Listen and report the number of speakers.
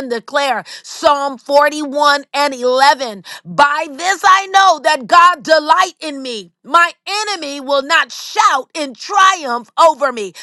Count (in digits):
1